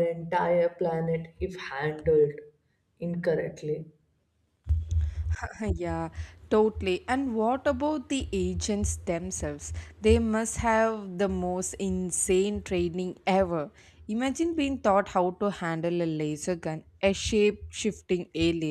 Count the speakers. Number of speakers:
2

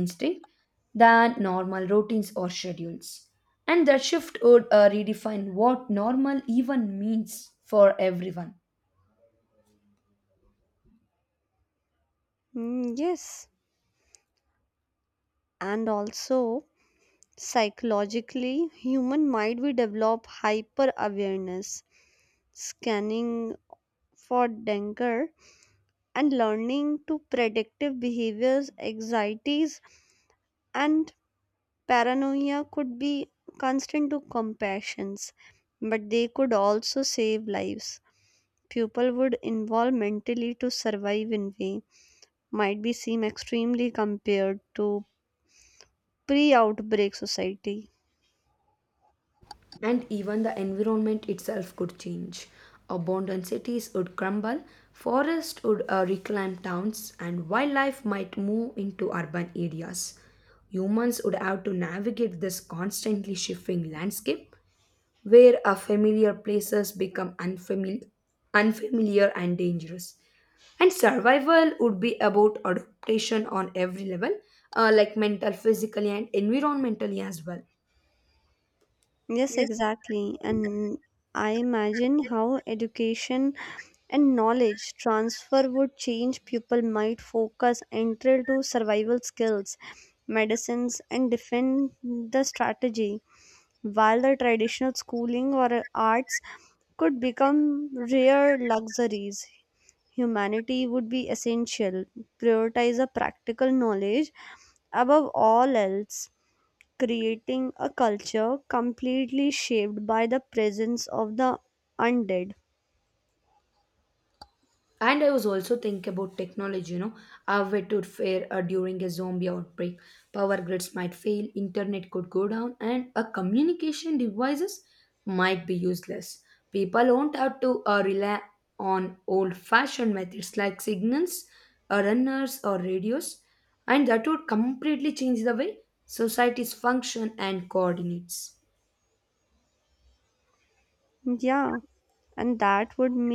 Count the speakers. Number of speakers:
2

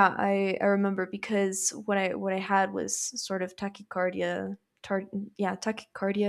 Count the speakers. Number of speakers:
1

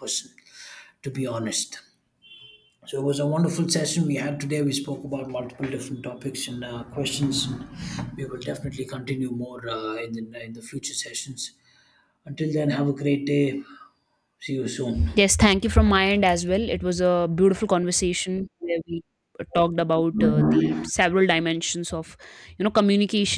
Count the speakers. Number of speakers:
2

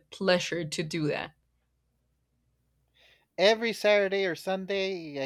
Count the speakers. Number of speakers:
2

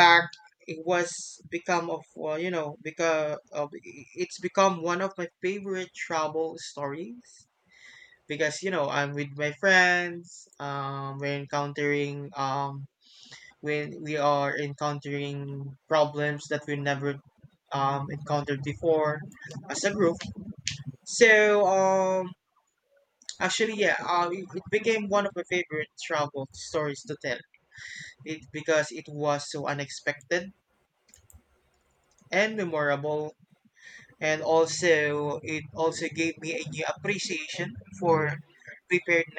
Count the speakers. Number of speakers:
1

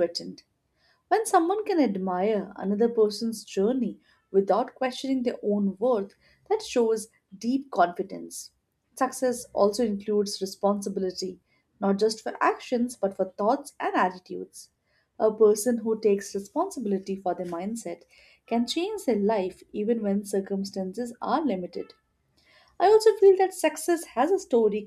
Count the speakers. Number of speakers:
1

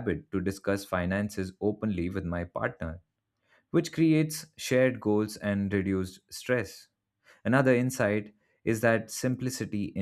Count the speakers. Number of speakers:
1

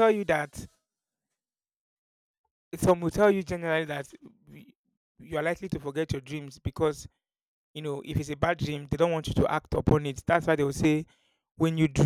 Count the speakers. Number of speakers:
1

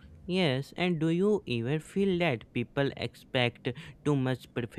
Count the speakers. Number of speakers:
1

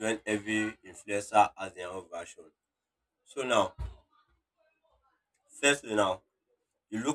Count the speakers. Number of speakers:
1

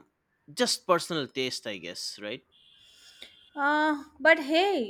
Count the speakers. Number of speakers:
2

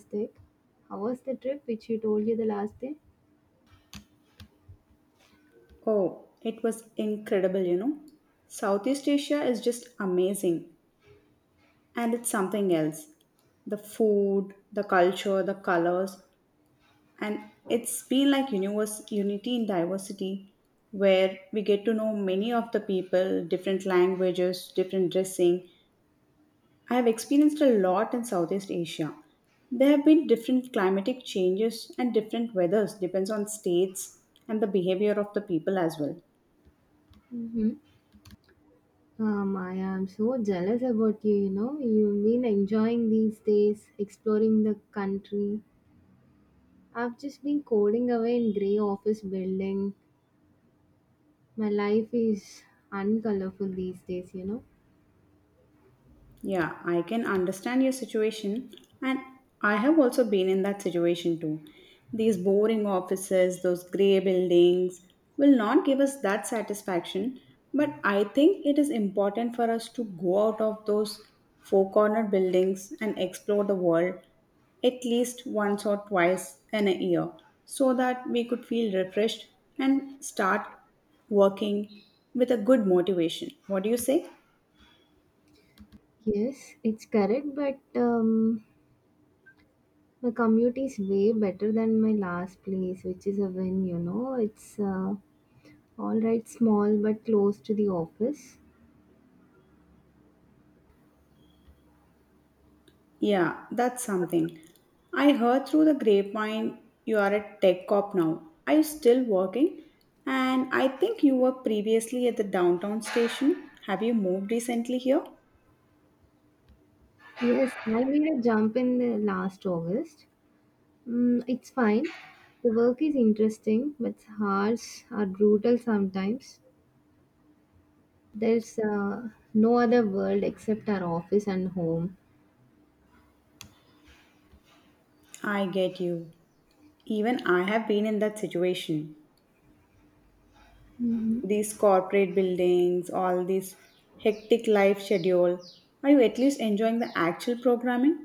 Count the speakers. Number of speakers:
2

